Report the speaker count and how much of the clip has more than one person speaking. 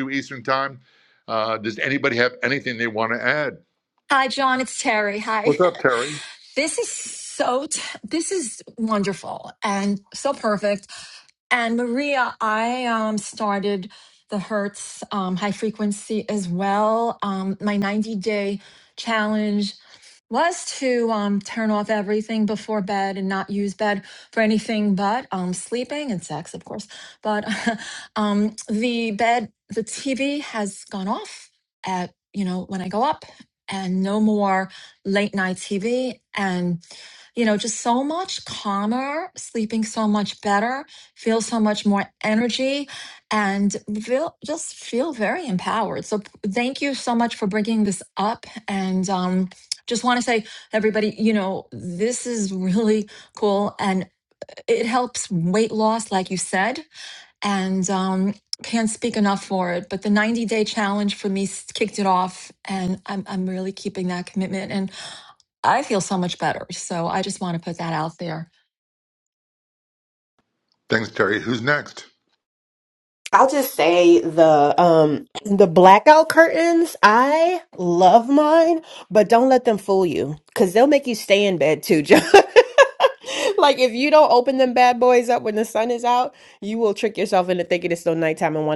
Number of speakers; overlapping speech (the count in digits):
3, under 1%